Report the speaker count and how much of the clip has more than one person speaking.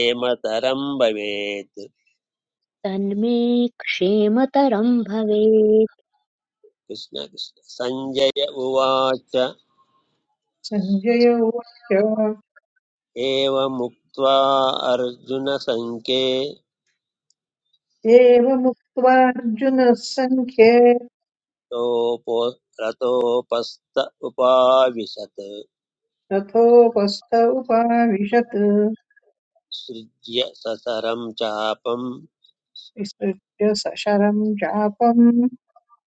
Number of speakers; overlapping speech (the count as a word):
three, no overlap